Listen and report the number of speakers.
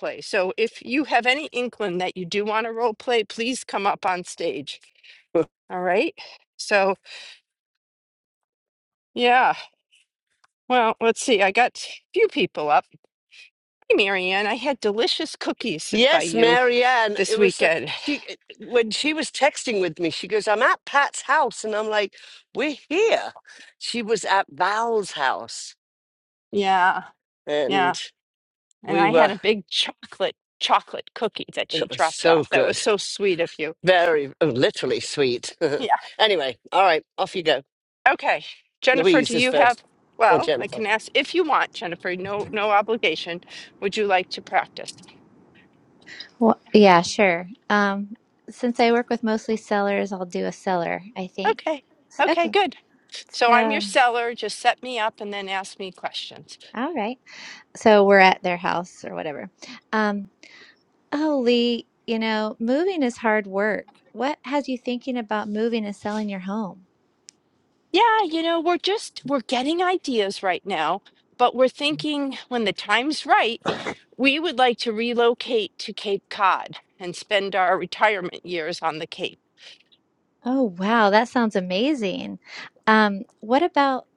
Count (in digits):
3